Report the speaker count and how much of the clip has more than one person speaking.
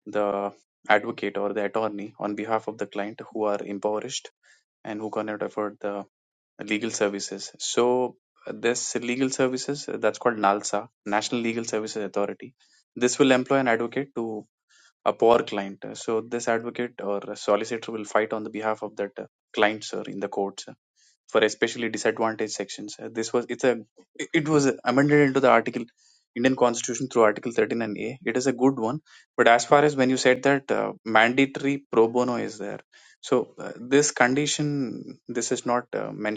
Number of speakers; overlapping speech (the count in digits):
1, no overlap